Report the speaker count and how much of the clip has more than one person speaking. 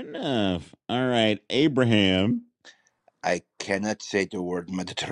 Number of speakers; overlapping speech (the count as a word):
two, no overlap